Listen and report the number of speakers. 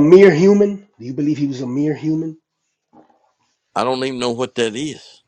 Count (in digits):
2